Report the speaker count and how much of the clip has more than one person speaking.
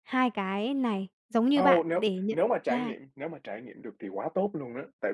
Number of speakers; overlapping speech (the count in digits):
2, about 28%